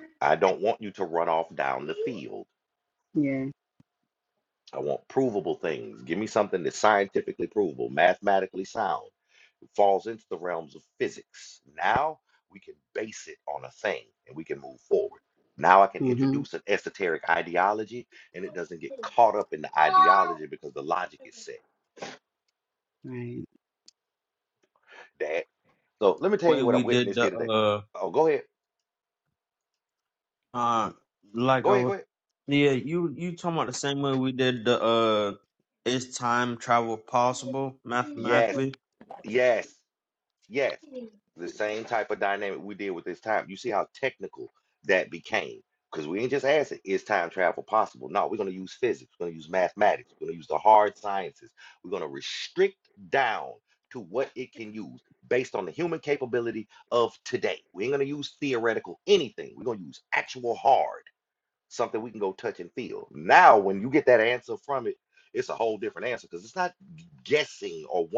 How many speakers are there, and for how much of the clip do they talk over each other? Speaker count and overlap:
3, about 3%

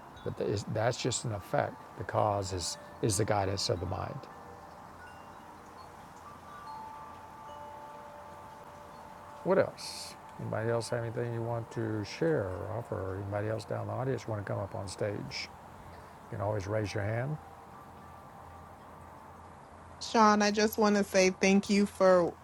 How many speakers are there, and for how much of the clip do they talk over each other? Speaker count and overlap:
2, no overlap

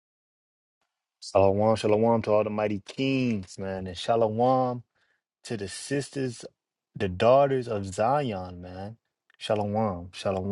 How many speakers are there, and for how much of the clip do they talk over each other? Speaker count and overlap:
1, no overlap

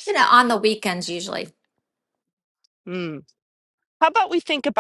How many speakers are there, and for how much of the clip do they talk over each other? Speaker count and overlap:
2, about 1%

